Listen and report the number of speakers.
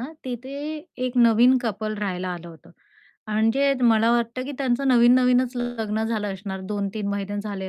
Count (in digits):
1